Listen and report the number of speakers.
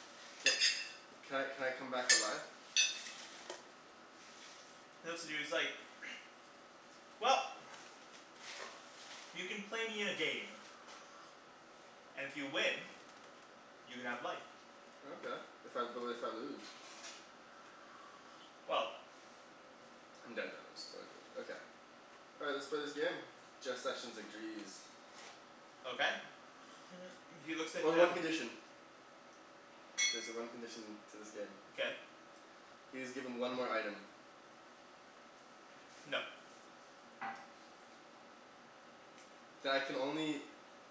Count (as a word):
two